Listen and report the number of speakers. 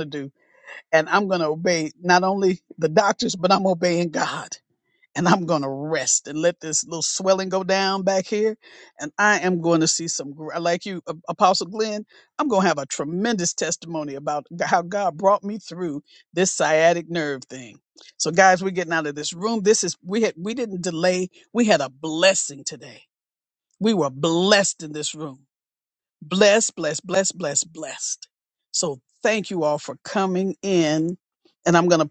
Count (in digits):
1